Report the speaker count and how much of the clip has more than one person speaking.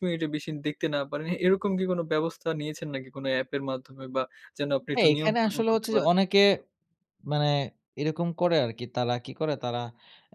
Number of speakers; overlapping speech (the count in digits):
2, about 11%